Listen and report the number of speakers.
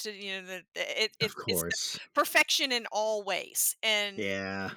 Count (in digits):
2